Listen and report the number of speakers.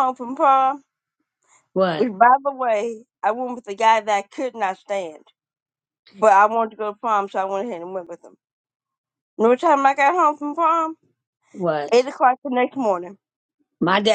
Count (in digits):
2